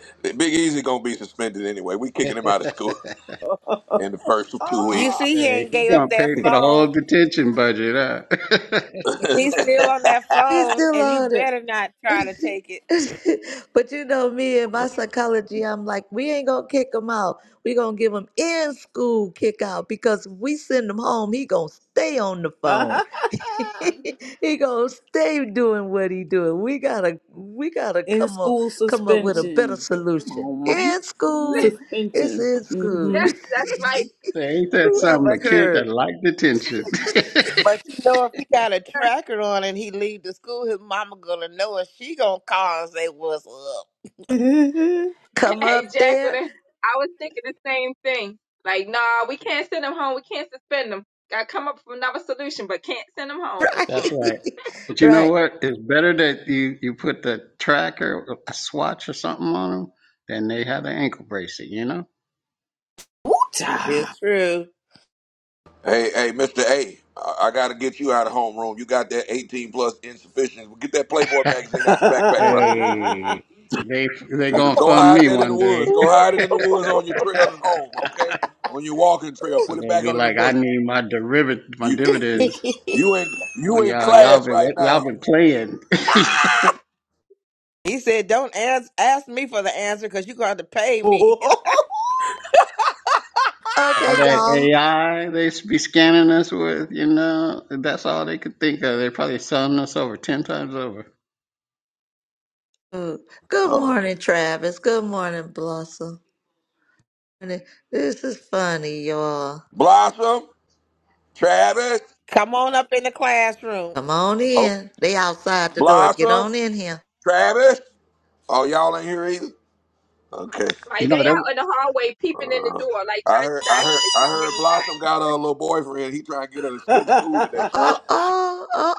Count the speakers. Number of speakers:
6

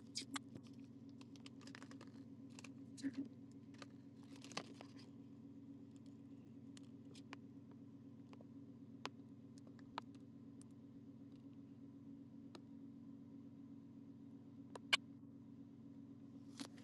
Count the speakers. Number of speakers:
0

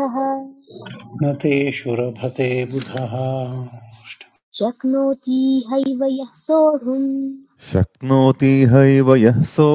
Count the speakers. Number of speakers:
3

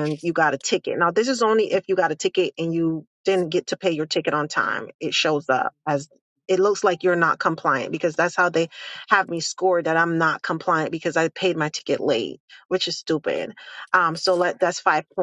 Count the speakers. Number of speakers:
1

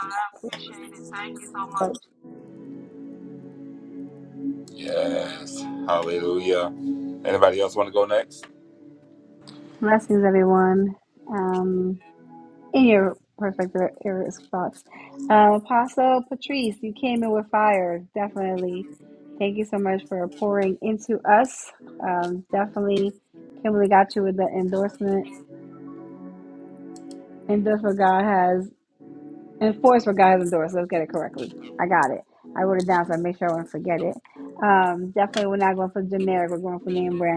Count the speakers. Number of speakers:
3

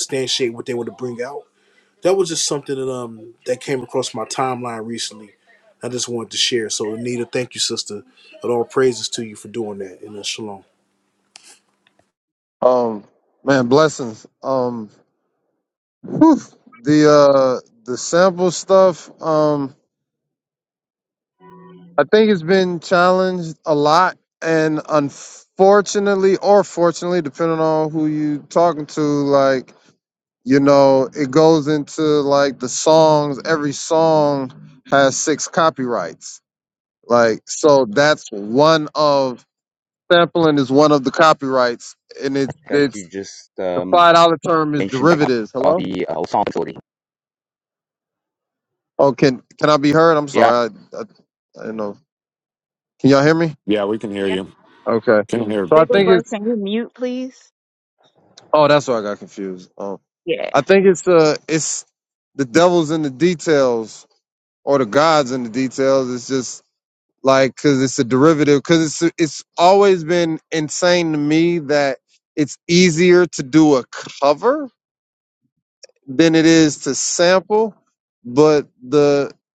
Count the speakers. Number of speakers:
5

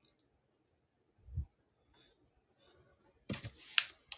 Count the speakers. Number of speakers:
0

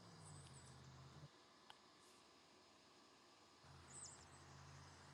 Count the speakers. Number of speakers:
0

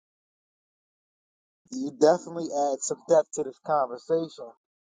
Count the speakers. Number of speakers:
1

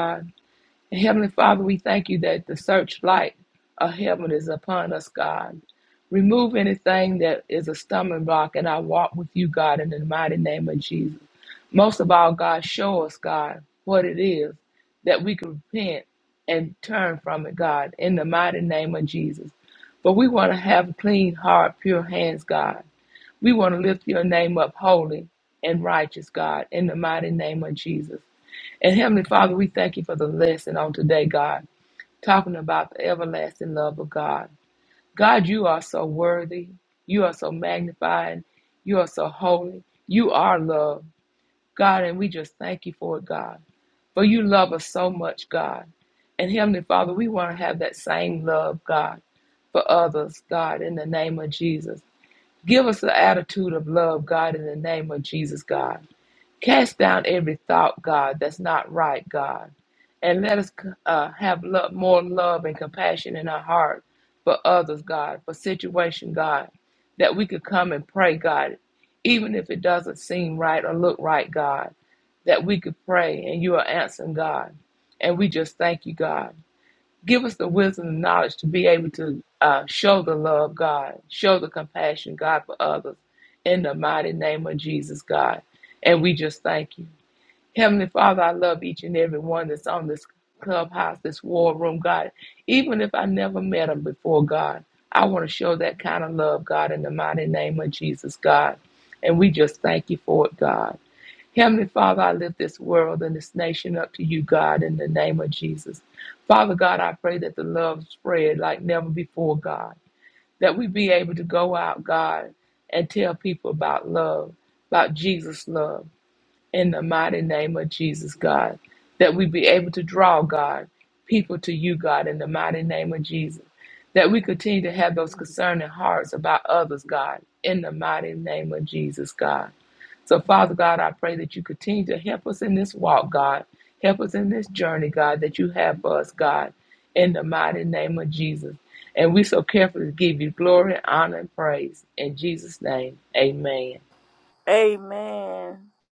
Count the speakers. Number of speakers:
2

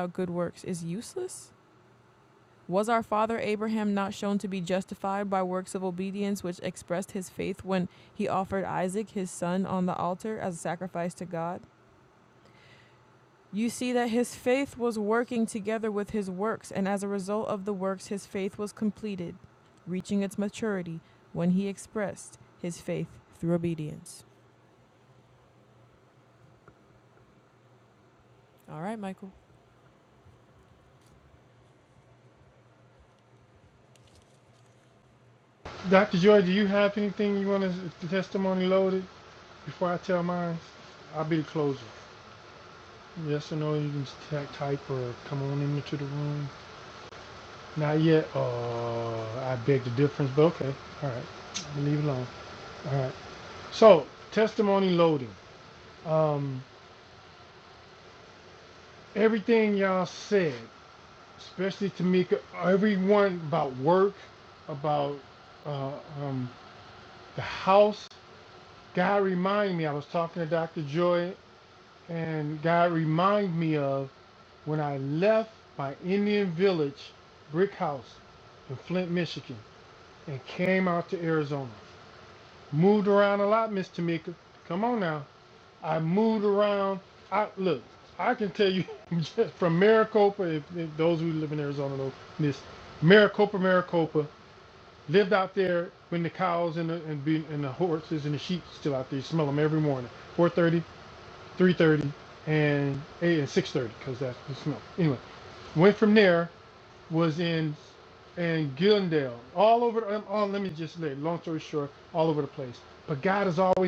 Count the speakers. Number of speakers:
2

